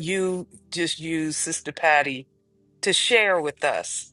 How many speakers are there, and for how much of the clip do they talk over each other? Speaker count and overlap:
one, no overlap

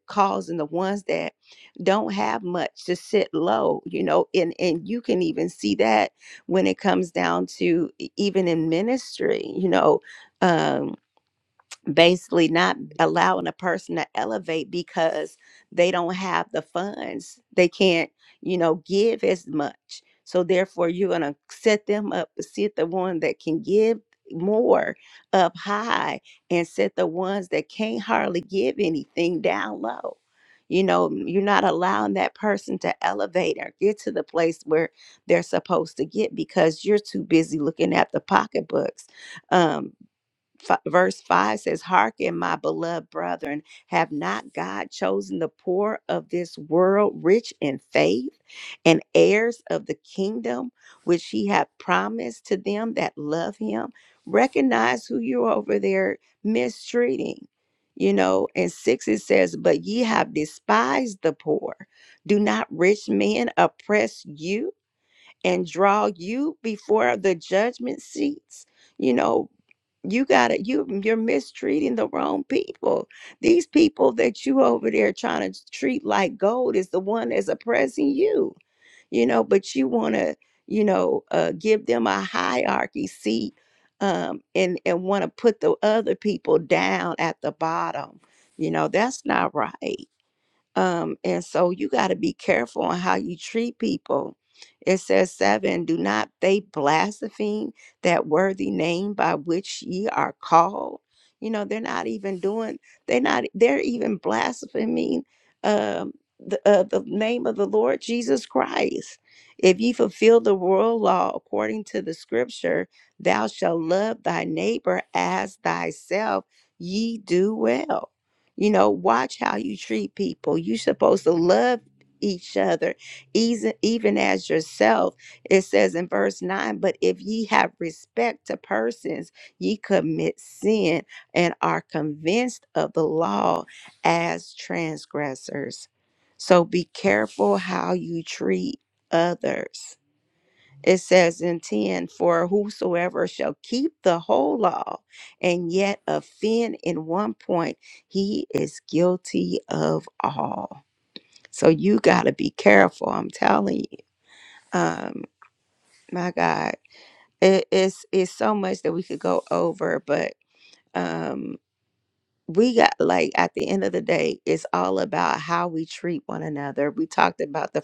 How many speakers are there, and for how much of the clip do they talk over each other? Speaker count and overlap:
one, no overlap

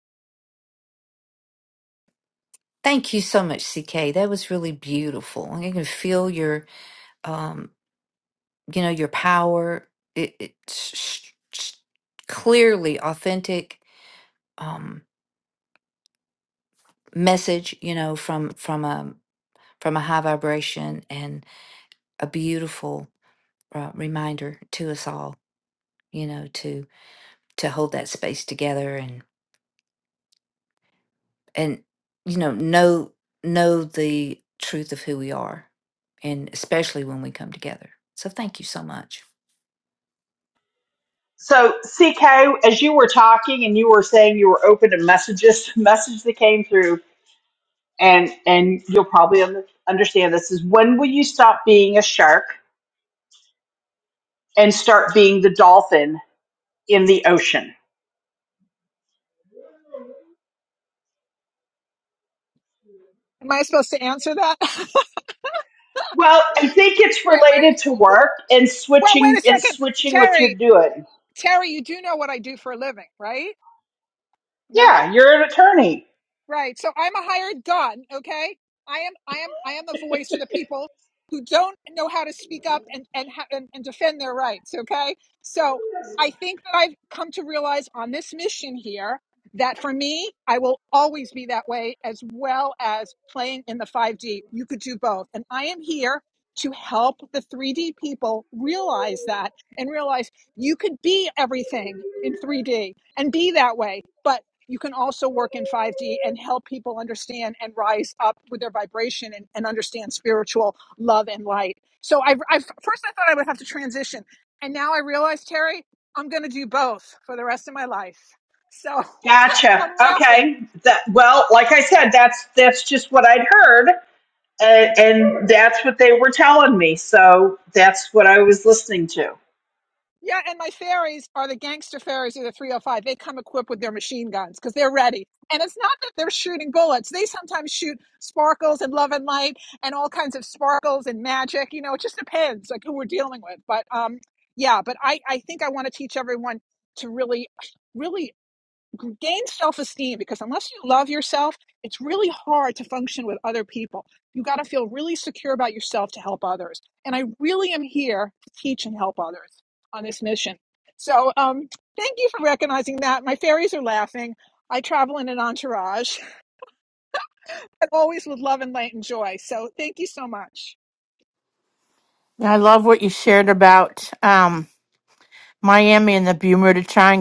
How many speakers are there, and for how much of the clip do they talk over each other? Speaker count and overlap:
four, about 2%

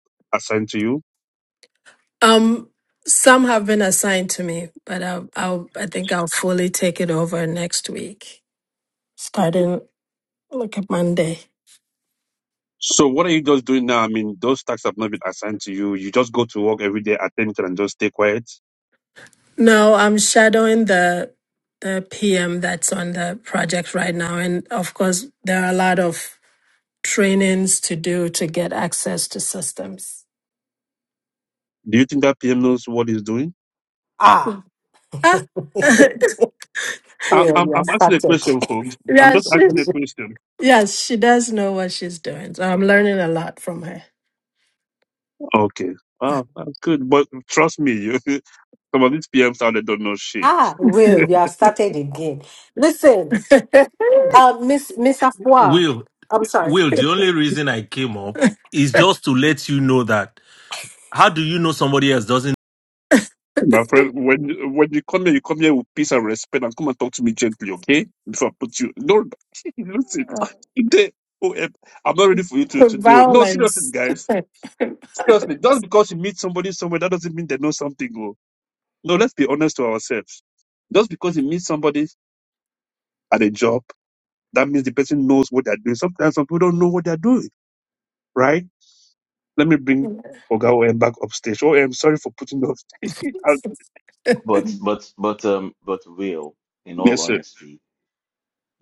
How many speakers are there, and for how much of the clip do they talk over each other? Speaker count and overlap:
five, about 4%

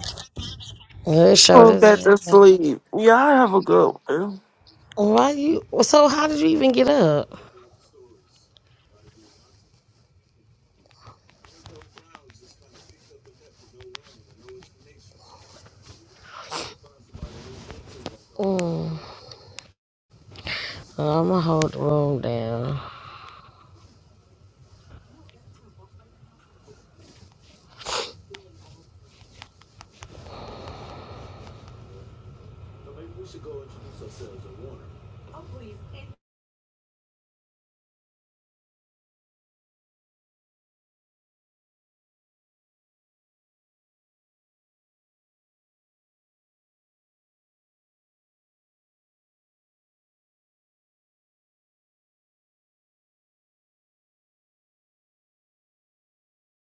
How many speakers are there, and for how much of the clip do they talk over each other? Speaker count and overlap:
two, about 1%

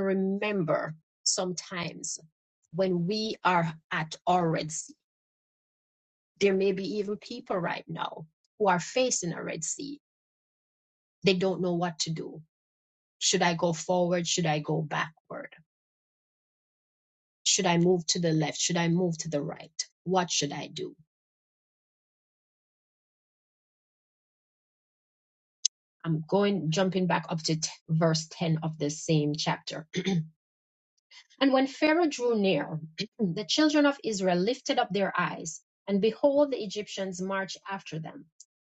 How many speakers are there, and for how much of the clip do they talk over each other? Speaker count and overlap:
one, no overlap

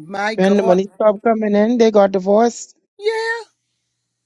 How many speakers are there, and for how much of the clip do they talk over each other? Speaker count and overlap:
two, about 10%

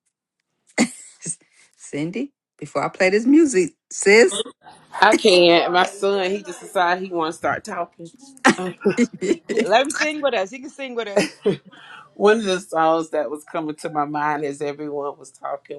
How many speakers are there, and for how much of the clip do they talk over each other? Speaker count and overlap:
three, about 1%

